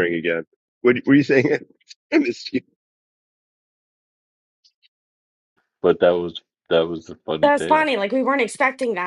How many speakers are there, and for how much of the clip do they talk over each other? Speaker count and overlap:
three, about 5%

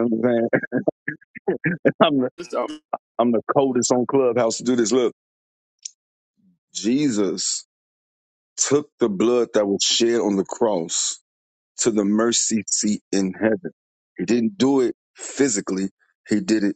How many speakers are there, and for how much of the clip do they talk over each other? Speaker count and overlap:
one, no overlap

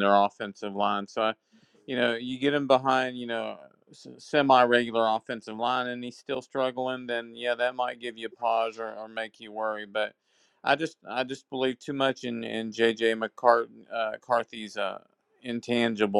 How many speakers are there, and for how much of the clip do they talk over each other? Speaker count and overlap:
one, no overlap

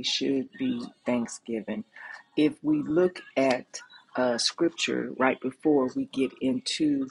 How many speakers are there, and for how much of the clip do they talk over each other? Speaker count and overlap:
one, no overlap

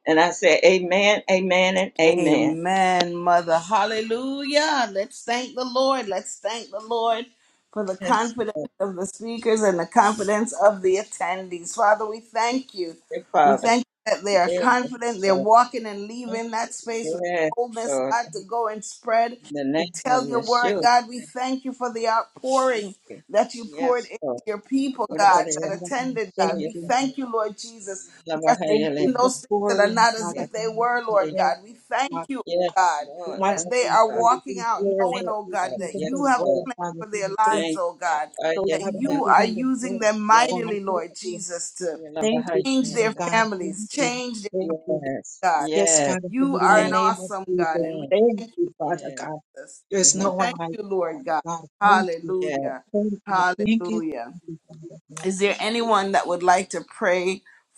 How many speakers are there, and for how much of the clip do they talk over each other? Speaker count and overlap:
three, about 41%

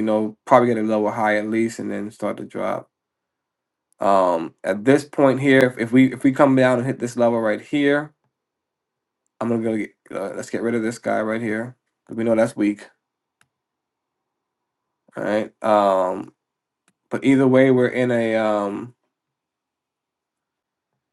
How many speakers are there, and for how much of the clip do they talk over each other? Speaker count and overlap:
one, no overlap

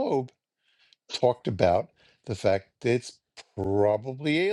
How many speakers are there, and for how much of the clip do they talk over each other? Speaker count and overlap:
one, no overlap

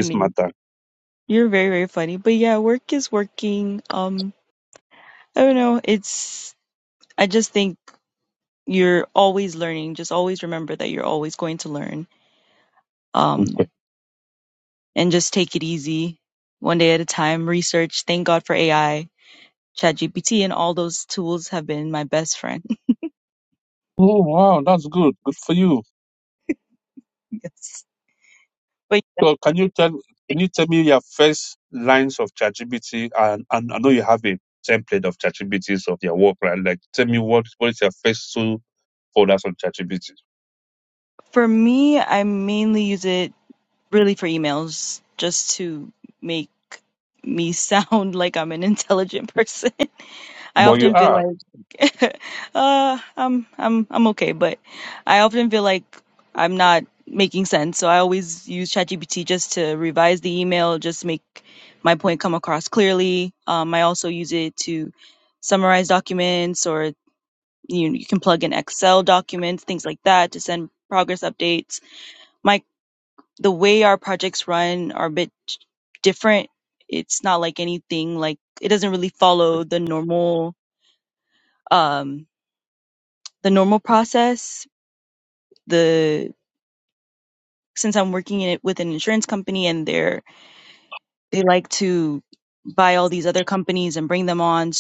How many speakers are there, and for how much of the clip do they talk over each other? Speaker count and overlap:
two, about 1%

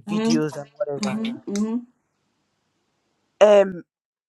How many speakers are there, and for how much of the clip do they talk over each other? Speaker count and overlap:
two, about 12%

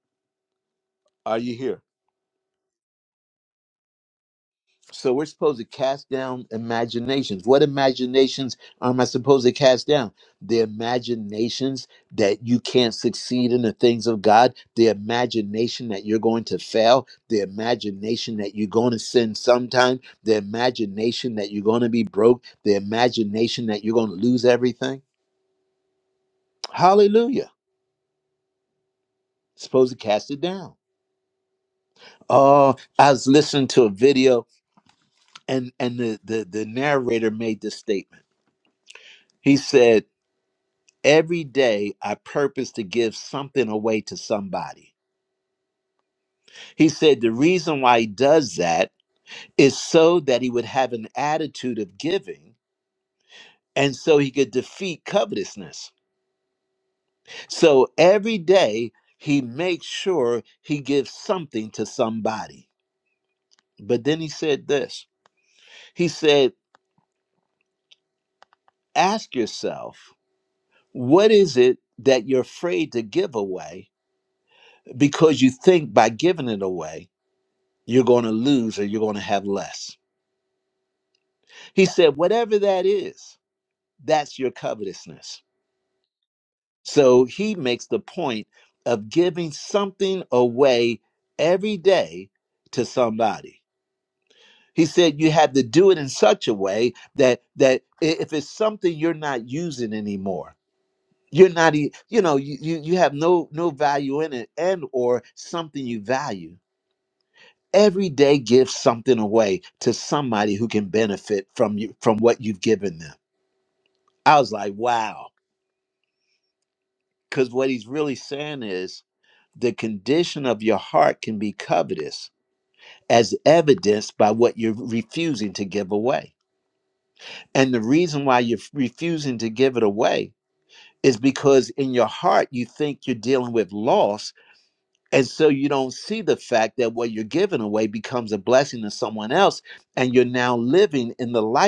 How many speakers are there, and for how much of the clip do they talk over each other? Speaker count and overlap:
one, no overlap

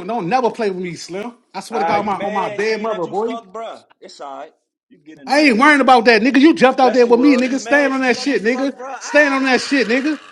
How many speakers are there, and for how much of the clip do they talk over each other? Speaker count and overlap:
two, about 47%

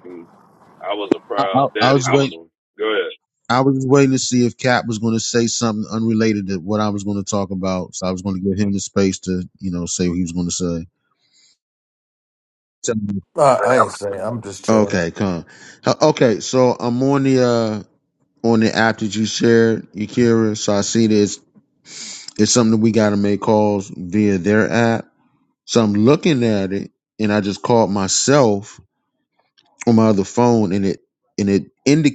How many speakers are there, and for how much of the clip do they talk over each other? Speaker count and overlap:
three, about 4%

